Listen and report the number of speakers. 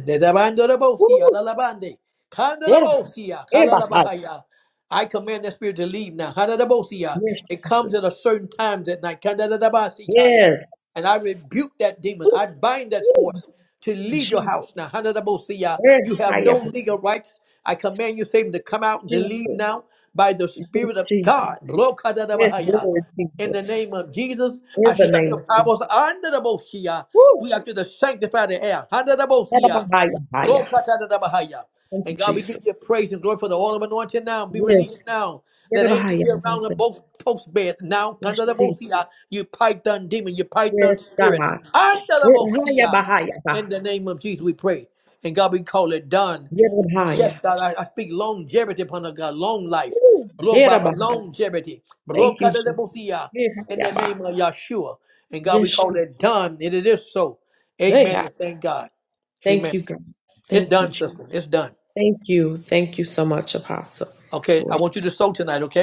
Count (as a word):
two